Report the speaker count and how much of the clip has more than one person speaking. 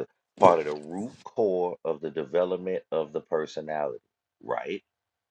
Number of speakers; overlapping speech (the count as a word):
one, no overlap